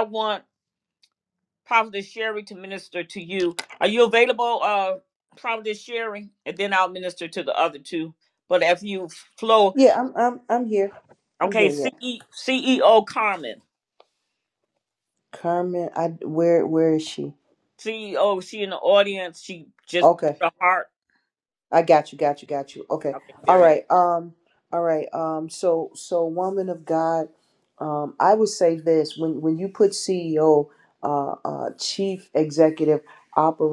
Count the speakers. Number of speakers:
two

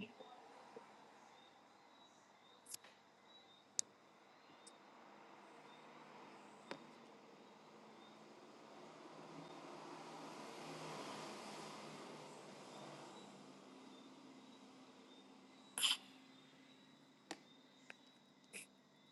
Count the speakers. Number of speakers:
zero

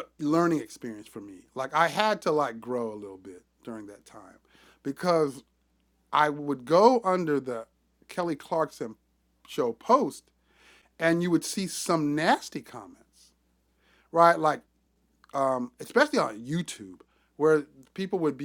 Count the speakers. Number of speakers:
one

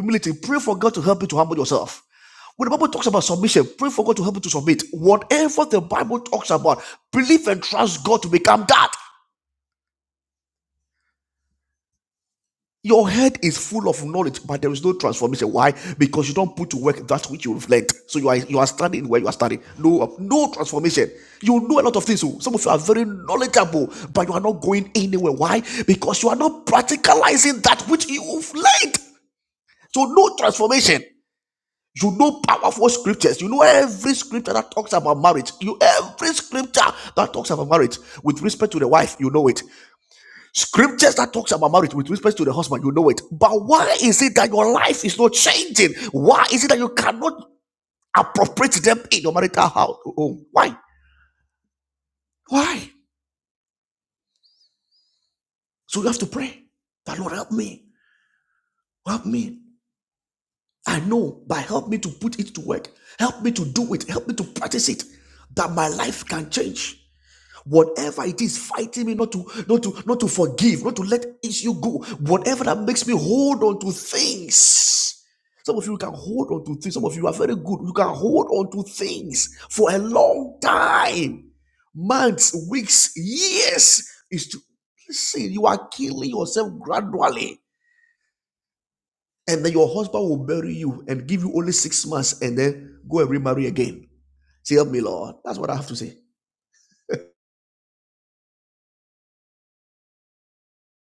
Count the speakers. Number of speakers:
one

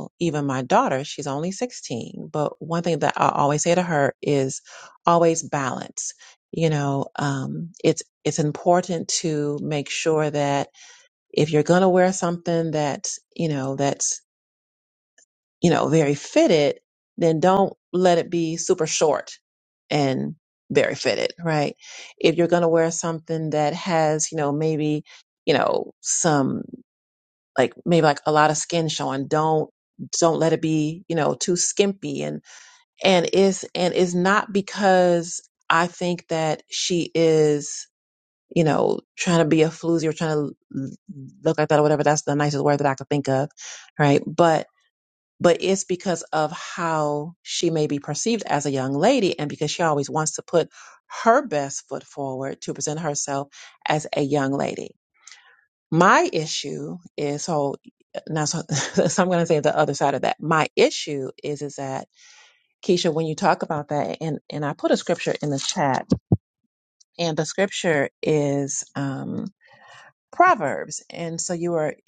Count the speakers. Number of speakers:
one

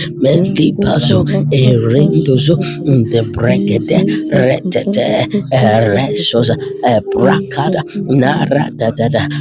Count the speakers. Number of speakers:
two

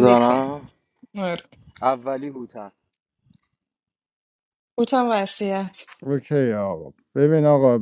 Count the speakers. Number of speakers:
three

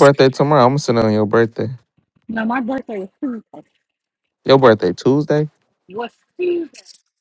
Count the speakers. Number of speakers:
two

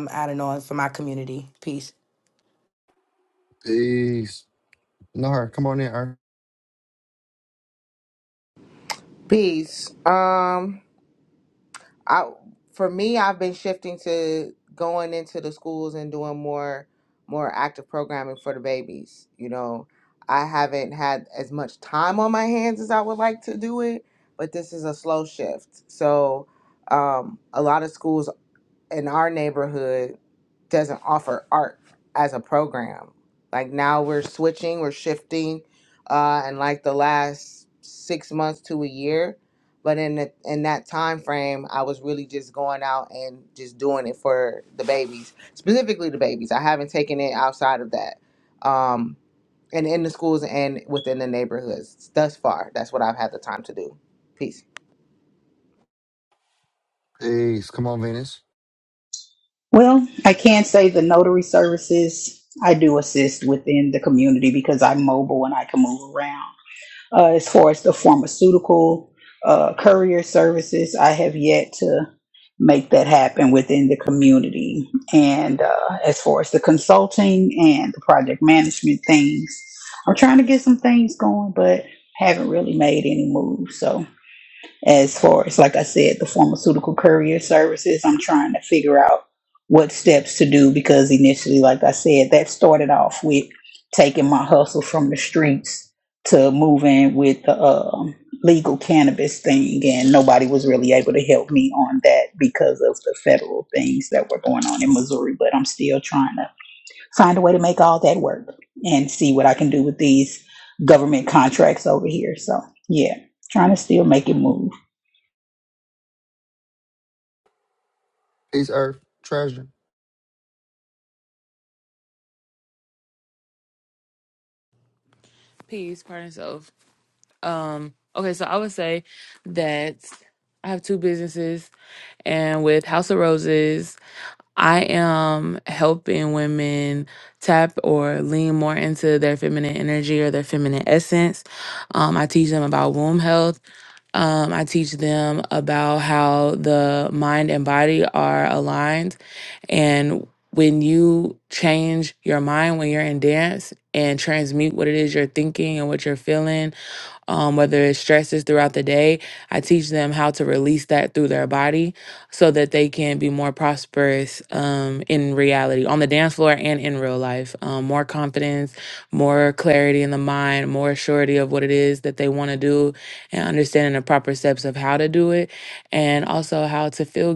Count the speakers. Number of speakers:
five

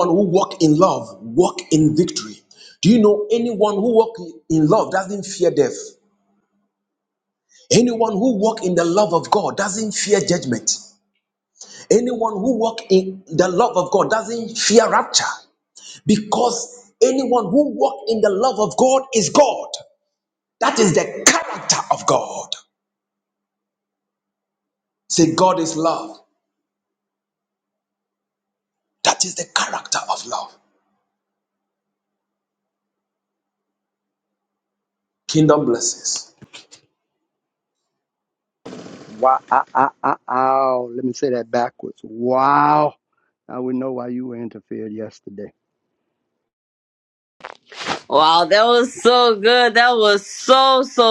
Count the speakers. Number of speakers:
three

